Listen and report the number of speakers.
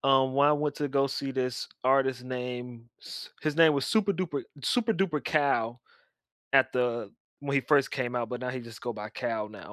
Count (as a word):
one